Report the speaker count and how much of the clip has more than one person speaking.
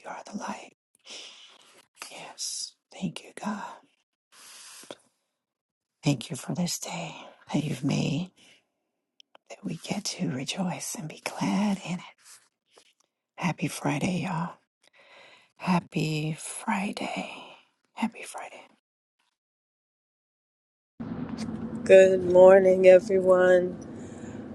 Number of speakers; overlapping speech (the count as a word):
two, no overlap